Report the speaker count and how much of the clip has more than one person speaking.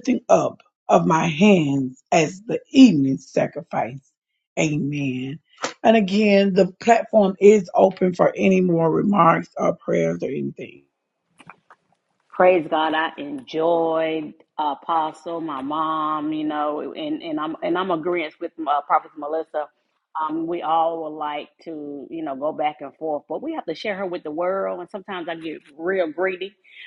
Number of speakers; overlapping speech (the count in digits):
2, no overlap